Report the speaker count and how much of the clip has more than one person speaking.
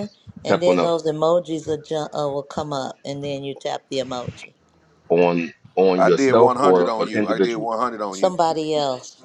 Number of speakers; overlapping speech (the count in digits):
3, about 24%